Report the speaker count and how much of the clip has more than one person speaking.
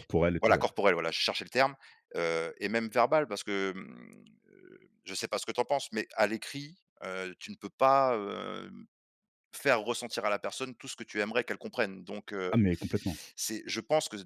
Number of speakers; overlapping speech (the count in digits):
2, about 2%